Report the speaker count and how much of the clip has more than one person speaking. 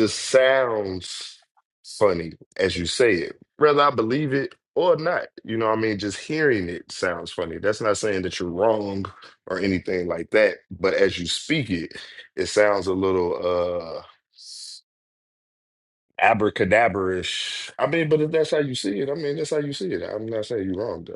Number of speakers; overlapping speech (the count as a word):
one, no overlap